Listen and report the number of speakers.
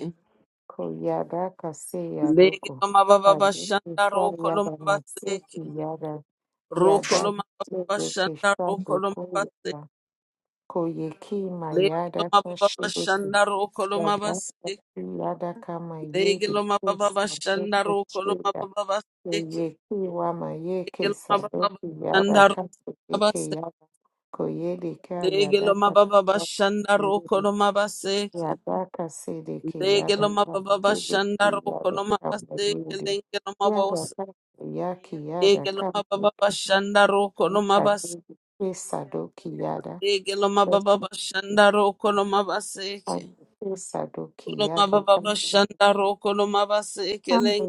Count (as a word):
two